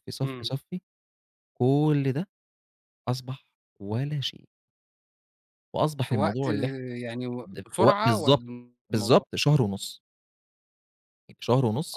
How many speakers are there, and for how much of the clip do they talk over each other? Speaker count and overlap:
two, about 16%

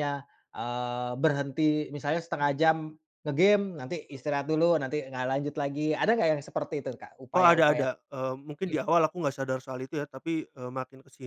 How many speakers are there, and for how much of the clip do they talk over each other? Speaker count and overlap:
two, about 6%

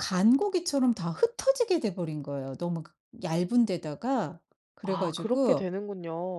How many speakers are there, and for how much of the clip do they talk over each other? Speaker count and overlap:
two, about 13%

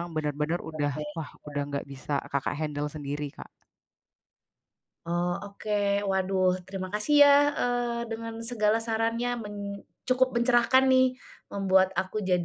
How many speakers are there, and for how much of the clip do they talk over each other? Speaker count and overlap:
two, about 4%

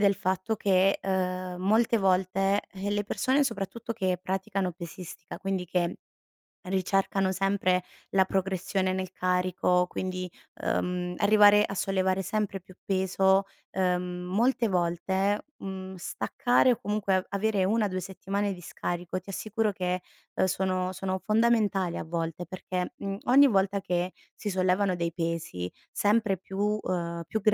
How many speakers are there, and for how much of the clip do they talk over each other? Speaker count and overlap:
one, no overlap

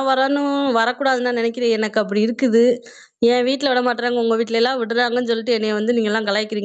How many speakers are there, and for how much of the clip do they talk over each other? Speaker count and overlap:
one, no overlap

